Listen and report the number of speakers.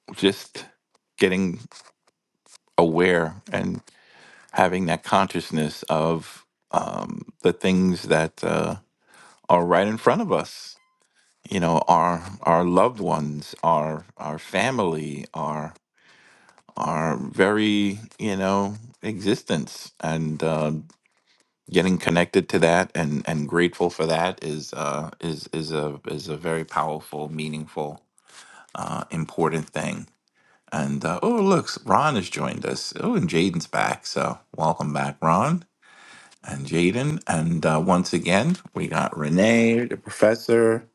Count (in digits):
1